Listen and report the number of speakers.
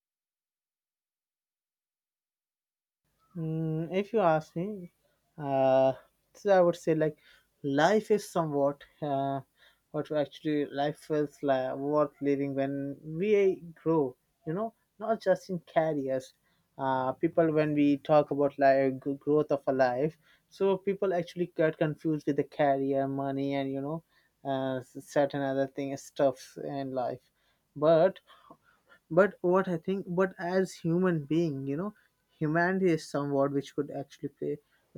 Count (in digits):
1